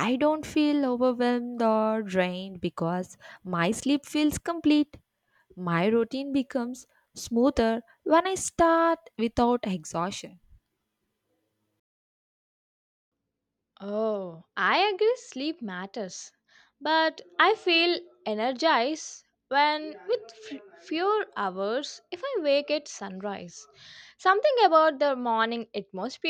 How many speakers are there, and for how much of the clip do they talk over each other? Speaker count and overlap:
2, no overlap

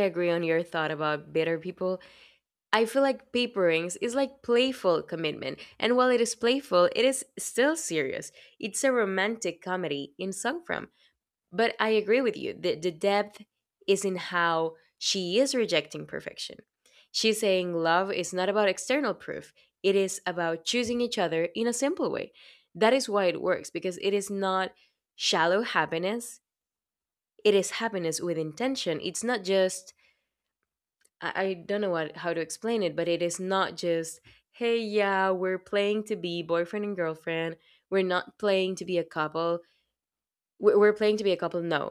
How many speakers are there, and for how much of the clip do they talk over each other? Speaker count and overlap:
1, no overlap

